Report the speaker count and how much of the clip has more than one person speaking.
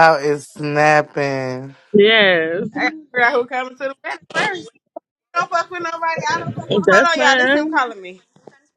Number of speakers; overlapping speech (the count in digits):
3, about 15%